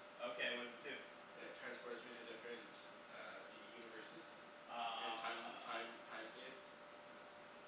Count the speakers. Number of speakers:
2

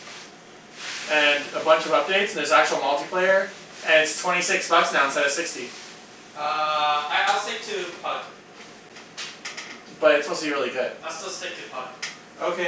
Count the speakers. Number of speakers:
2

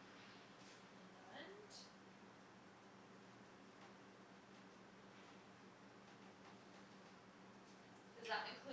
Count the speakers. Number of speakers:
1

